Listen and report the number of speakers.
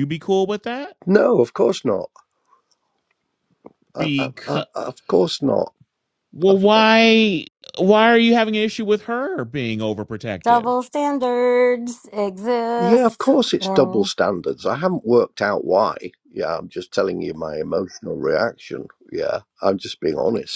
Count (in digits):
3